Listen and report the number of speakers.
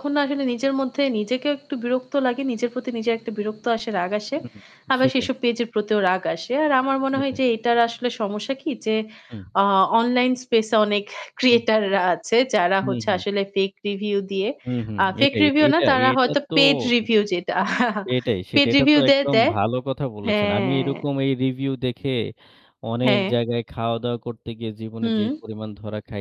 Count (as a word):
two